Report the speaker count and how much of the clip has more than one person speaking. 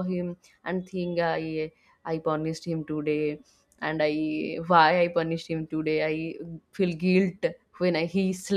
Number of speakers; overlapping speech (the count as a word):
one, no overlap